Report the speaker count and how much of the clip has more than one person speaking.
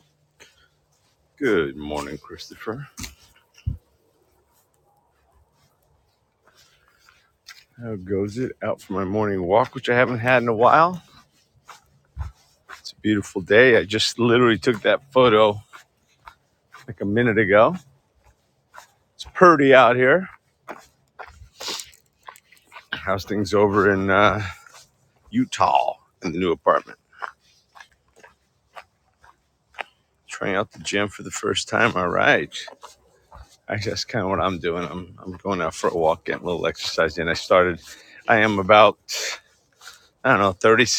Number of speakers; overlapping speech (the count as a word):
one, no overlap